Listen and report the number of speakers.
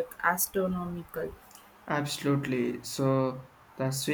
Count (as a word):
two